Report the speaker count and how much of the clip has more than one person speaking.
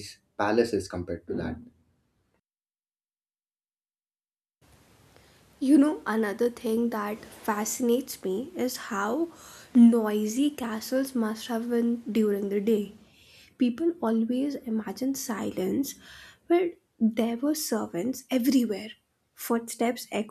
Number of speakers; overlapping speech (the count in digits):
2, no overlap